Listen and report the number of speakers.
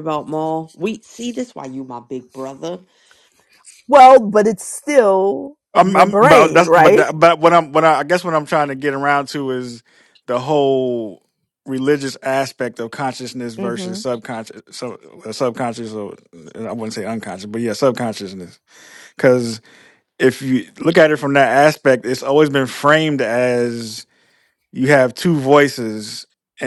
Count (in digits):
3